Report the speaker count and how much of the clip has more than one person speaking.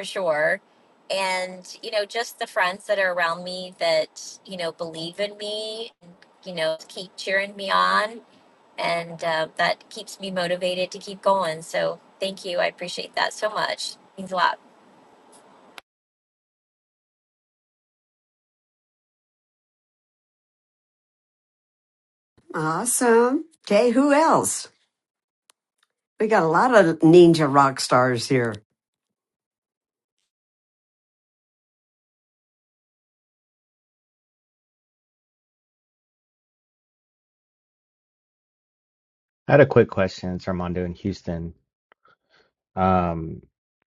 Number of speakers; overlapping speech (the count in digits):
3, no overlap